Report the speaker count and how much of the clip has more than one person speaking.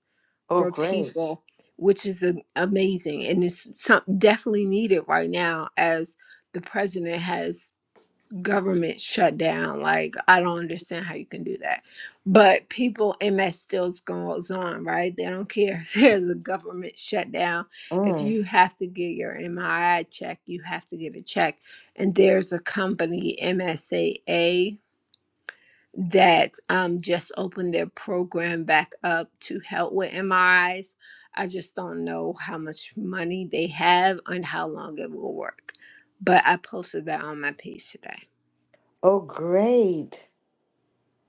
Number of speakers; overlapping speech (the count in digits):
2, about 2%